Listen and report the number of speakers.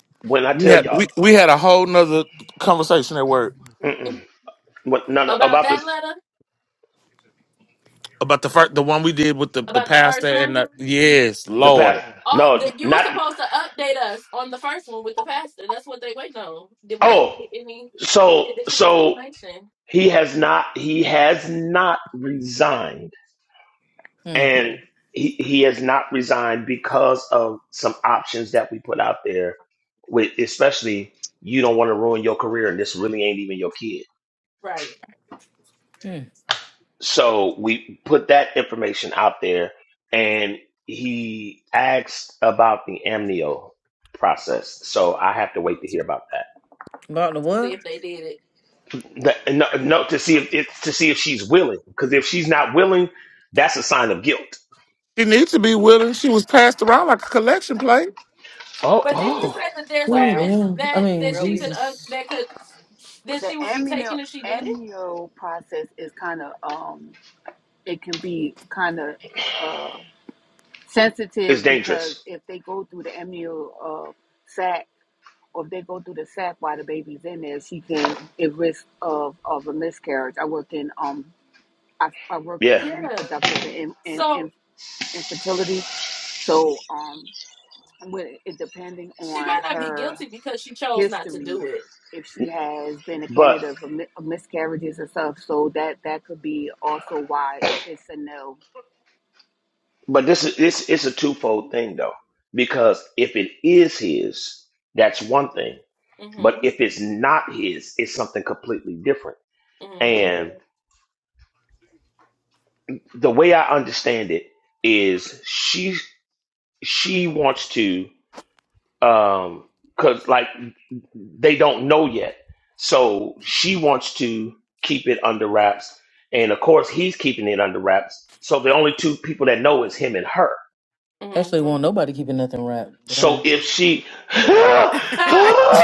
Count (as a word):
five